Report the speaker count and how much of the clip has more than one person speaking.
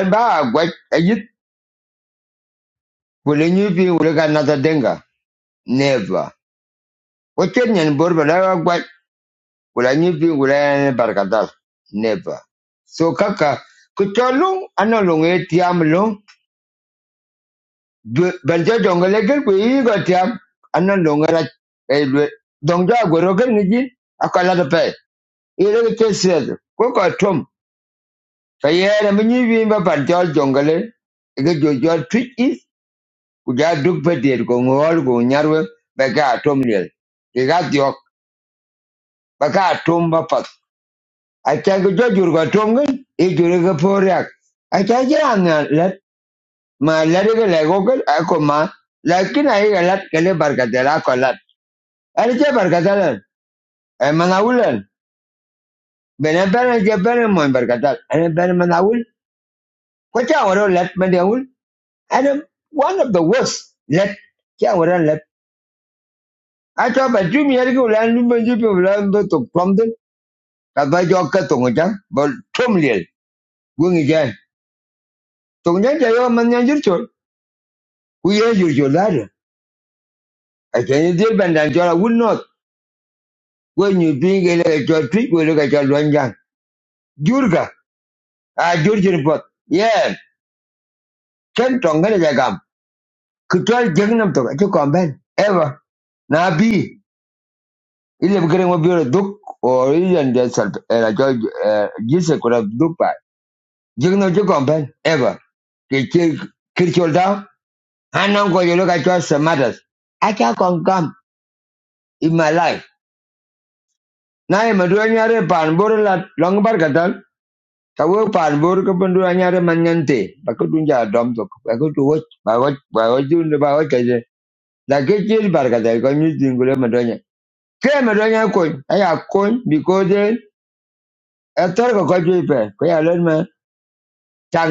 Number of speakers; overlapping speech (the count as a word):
one, no overlap